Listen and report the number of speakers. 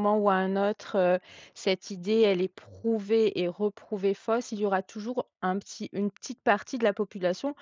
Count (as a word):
one